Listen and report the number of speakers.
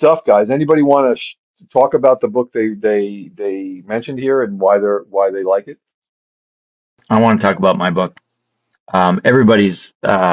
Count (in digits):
2